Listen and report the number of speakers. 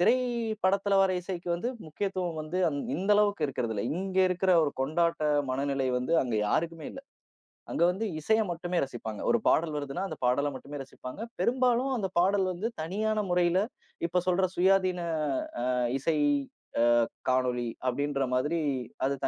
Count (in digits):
1